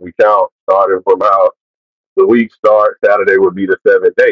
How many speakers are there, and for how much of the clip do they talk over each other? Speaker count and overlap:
1, no overlap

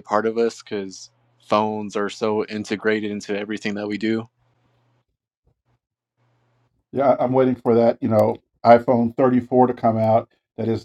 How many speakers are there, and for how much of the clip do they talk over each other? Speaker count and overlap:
2, no overlap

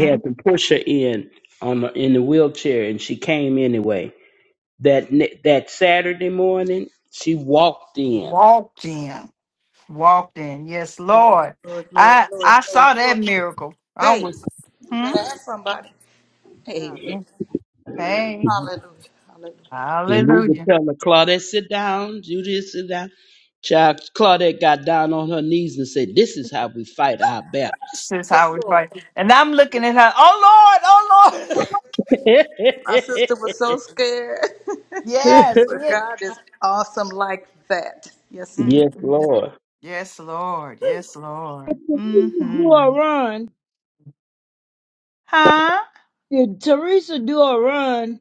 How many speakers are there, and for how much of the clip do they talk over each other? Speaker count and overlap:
4, about 11%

